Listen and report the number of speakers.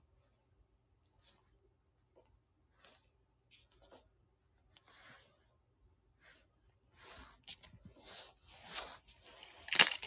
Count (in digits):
0